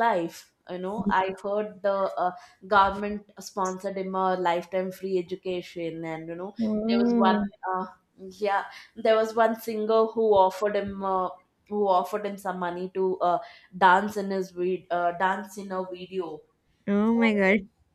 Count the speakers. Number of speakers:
two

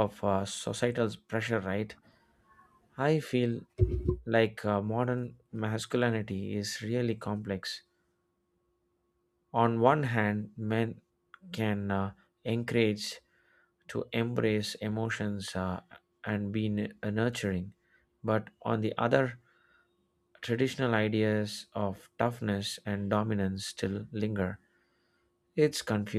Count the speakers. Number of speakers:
one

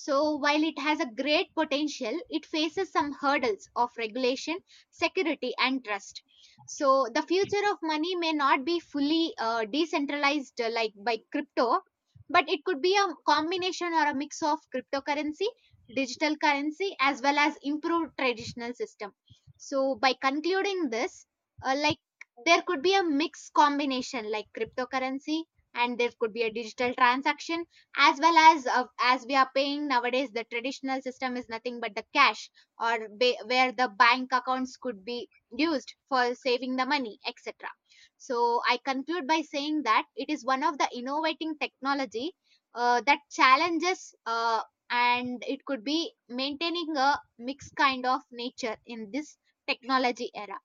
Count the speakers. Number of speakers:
one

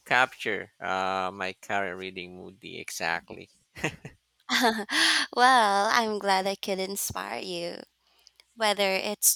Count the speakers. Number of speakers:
two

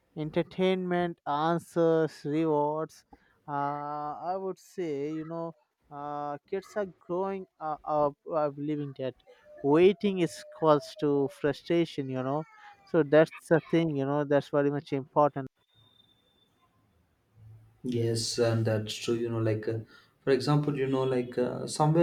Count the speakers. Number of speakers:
two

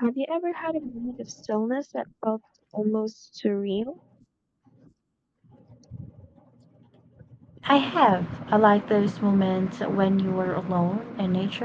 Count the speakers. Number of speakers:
two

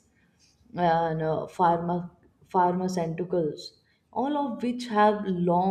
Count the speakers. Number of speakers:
one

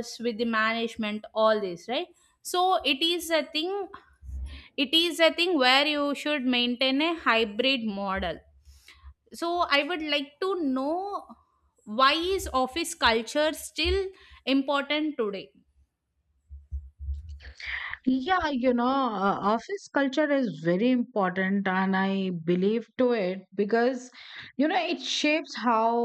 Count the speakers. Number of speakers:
two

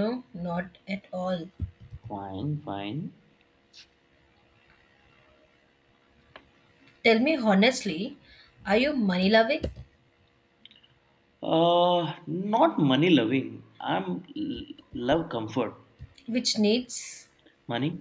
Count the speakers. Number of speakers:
two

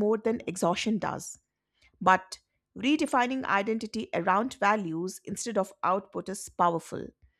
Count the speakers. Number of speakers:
one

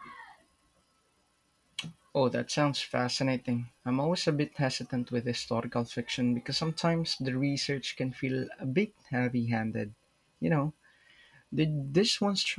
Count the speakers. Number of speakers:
one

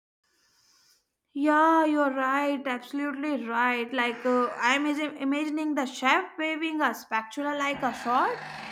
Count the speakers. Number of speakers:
one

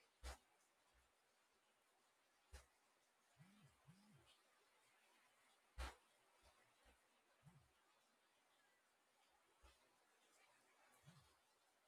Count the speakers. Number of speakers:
zero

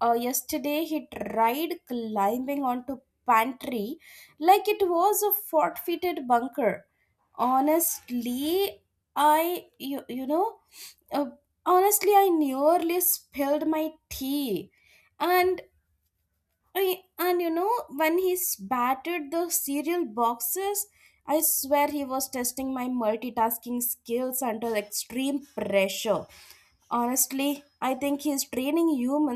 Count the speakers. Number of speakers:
one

